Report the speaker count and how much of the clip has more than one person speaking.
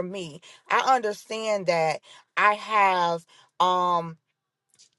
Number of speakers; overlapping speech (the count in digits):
1, no overlap